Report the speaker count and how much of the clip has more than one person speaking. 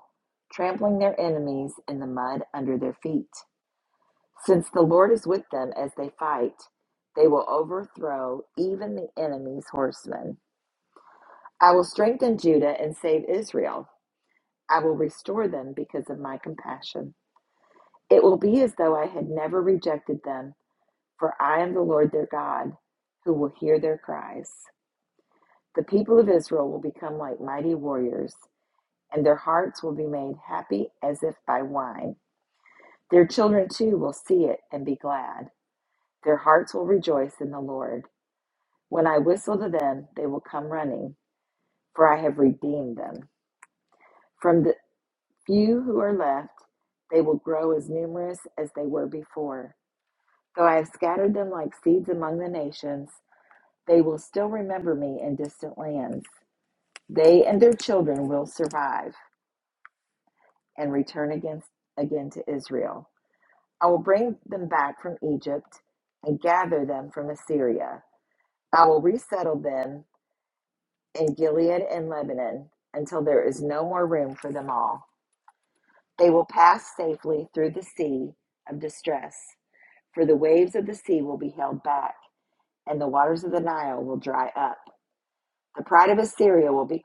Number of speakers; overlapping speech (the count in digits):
1, no overlap